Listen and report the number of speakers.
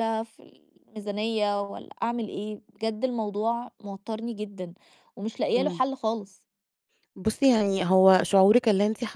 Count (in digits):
2